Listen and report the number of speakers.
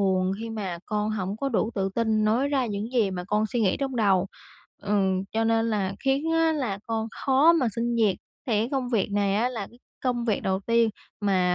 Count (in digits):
1